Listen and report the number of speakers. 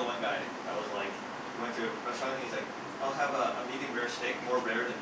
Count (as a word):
one